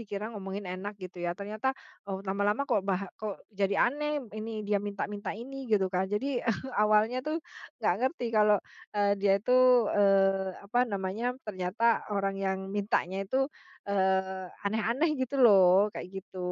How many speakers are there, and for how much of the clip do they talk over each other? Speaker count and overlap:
one, no overlap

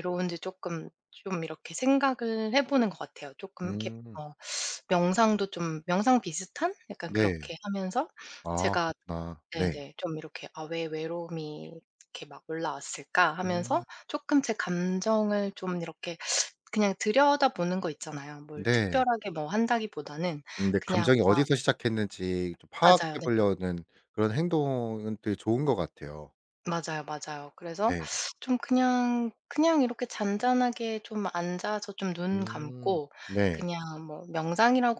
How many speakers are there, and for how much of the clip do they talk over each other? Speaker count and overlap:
two, about 11%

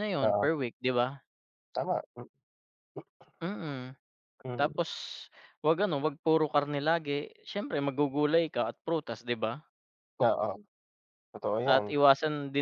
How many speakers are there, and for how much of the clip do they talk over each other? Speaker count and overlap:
two, about 6%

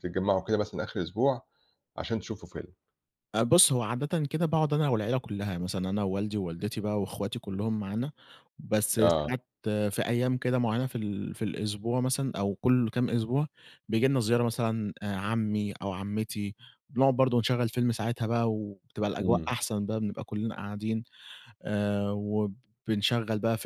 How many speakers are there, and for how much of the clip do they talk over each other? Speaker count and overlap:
two, about 3%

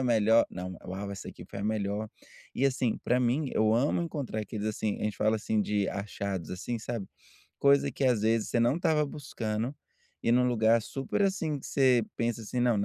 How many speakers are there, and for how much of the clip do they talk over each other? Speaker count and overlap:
one, no overlap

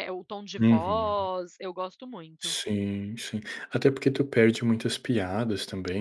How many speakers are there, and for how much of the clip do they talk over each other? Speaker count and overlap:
two, about 12%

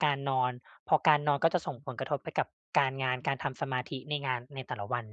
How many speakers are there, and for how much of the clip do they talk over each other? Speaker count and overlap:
one, no overlap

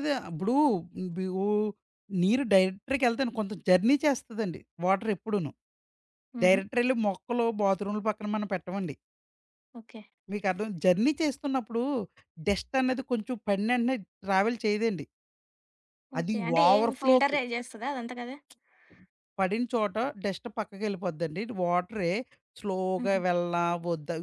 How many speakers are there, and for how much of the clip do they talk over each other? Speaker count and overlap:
two, about 7%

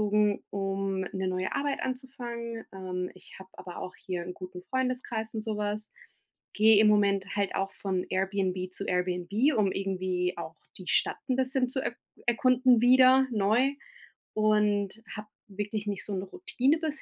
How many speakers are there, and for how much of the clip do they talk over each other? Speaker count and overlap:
one, no overlap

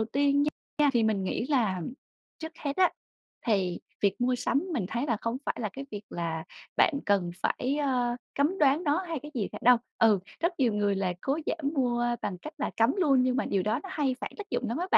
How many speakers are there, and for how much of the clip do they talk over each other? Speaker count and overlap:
one, no overlap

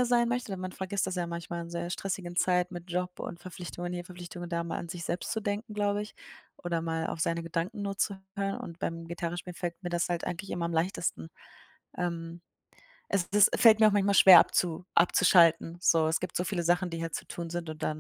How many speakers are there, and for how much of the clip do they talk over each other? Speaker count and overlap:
one, no overlap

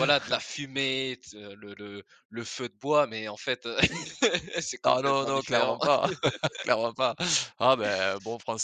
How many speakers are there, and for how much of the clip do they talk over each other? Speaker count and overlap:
two, about 11%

